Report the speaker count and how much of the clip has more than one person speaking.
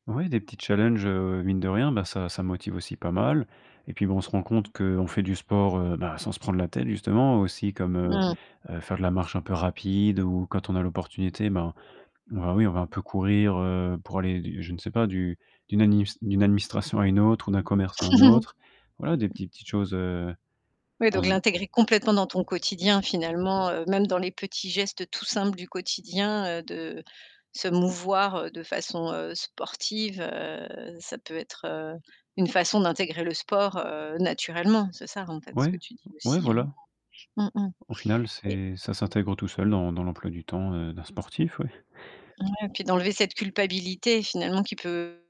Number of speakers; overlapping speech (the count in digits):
2, about 3%